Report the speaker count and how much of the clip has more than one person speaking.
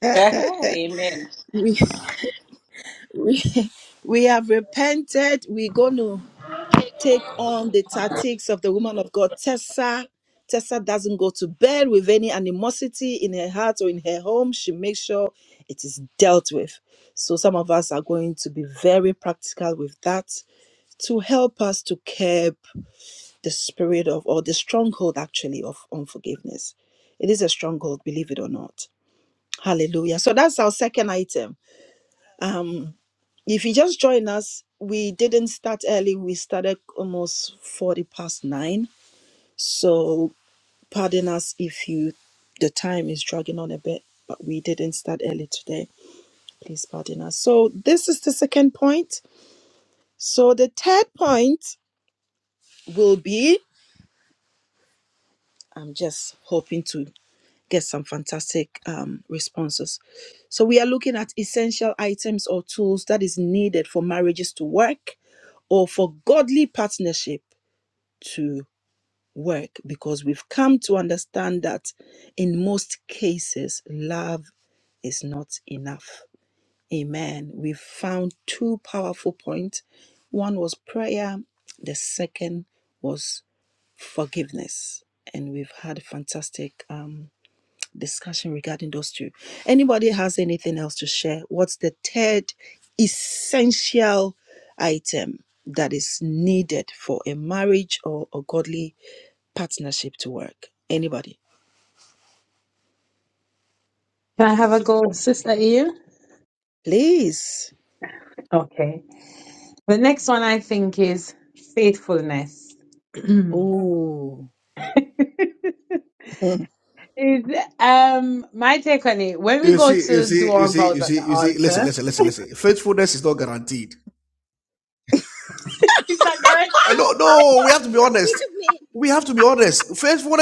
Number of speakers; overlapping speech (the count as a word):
four, about 2%